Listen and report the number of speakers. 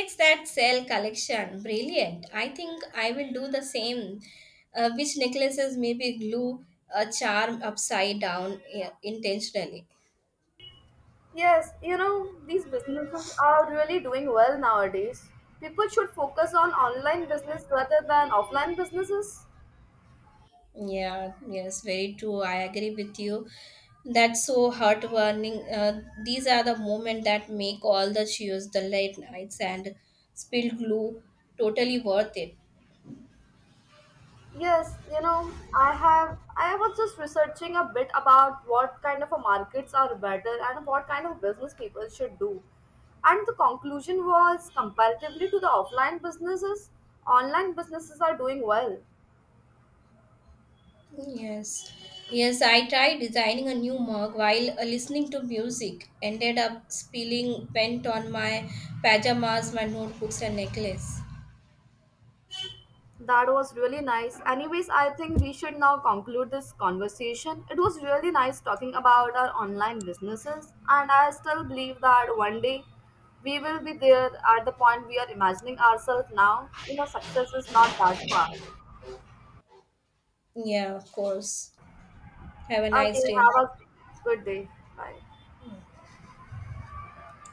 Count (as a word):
two